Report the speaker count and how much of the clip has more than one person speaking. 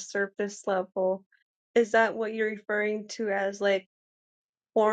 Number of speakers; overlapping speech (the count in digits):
1, no overlap